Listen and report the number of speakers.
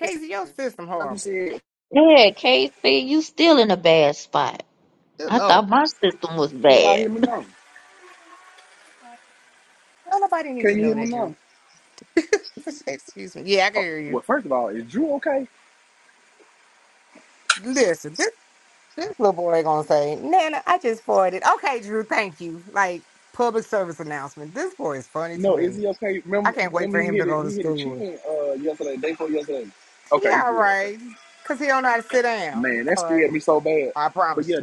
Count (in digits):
3